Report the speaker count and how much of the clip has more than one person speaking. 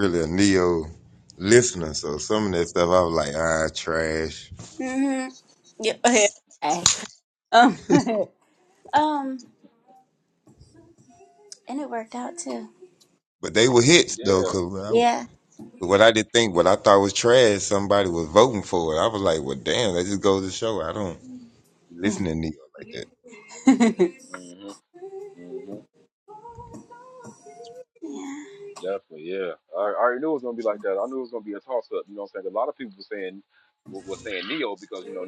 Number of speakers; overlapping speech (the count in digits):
3, about 2%